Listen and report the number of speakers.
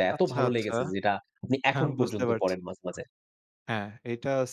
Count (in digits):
2